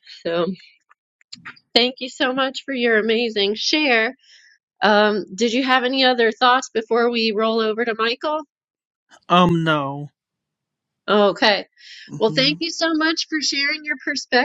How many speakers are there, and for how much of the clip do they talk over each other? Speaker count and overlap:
2, about 2%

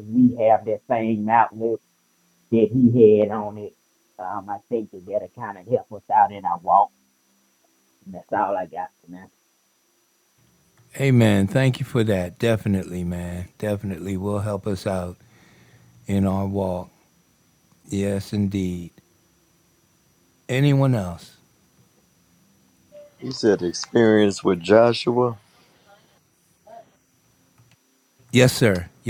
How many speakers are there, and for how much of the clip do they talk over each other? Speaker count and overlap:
3, no overlap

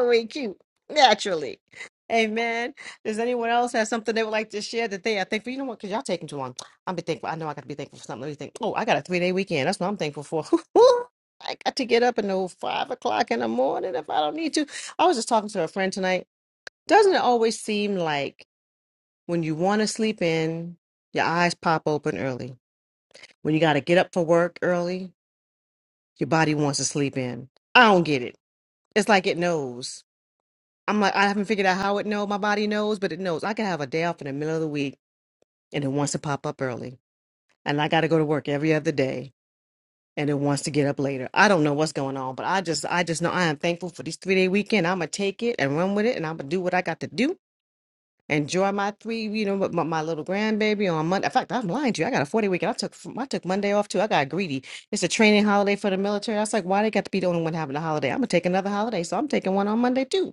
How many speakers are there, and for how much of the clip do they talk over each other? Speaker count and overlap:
1, no overlap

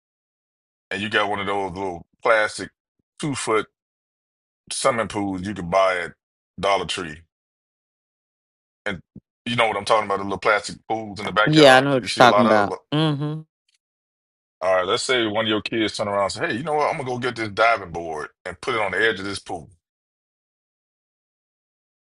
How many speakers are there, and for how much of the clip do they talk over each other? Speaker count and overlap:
2, about 6%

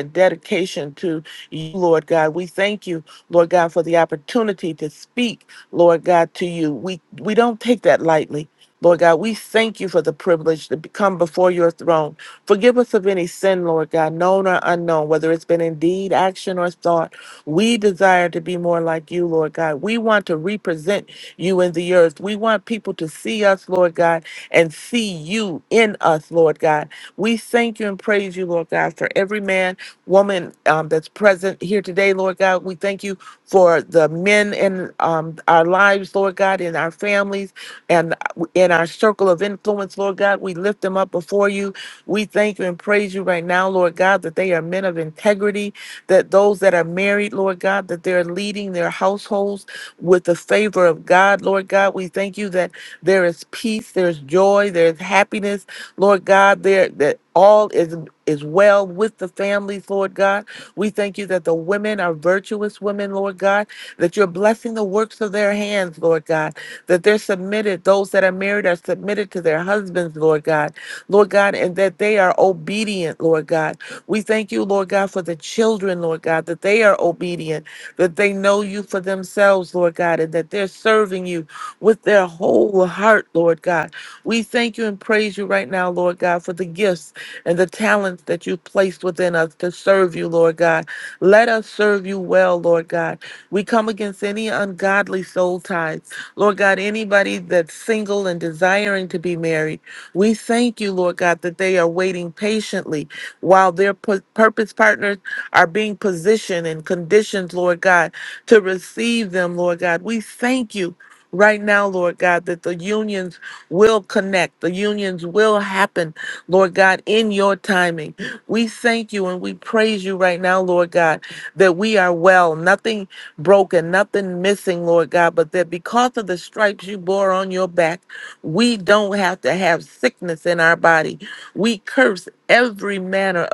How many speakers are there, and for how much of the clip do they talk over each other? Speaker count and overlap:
1, no overlap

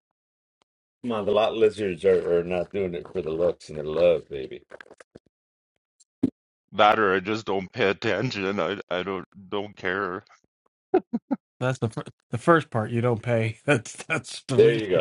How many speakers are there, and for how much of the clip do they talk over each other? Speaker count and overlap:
3, about 3%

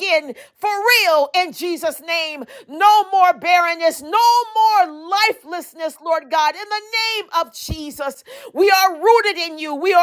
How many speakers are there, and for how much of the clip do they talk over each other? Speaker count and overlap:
1, no overlap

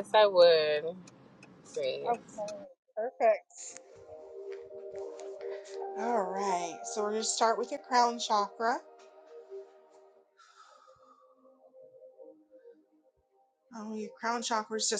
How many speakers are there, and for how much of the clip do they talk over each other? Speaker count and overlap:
2, about 1%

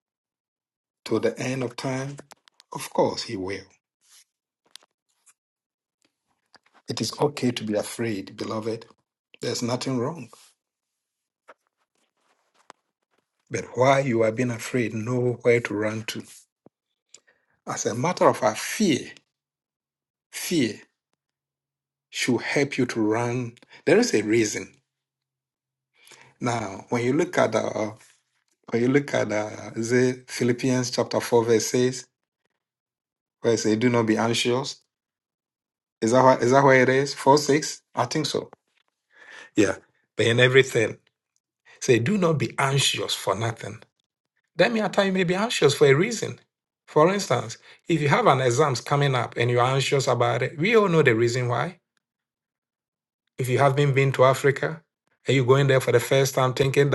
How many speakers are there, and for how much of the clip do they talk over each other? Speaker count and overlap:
1, no overlap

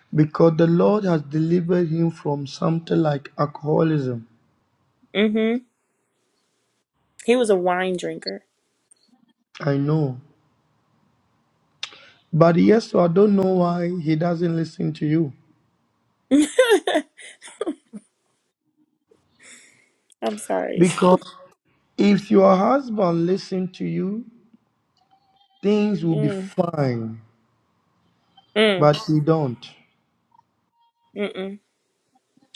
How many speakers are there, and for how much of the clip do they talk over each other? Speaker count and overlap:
2, about 2%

